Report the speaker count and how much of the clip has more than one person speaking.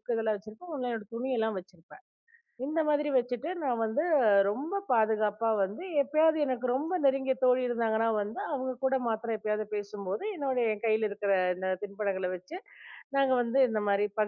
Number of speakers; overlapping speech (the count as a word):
one, no overlap